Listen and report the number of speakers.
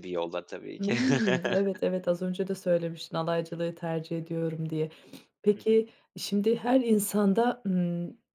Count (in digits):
2